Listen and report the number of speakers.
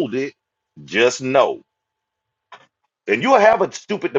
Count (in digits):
1